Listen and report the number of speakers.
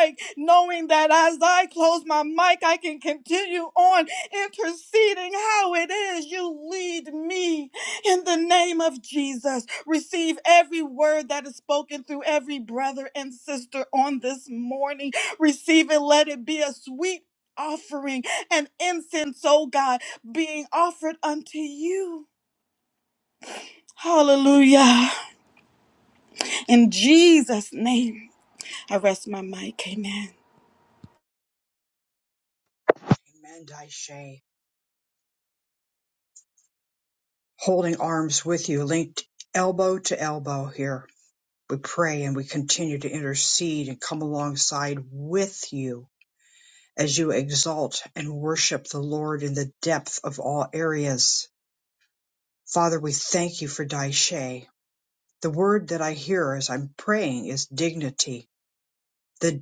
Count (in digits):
2